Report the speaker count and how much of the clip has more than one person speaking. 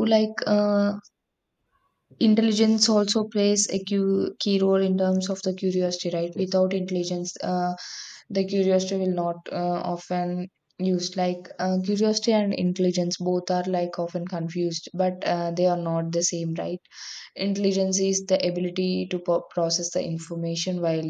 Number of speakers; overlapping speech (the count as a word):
one, no overlap